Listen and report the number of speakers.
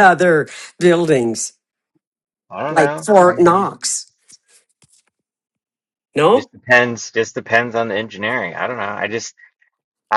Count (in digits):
2